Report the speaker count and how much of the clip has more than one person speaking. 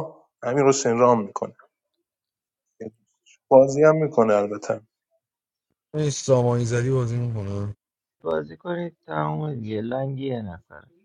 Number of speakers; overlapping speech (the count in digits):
3, no overlap